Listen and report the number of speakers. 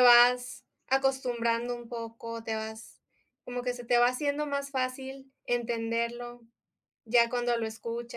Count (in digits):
1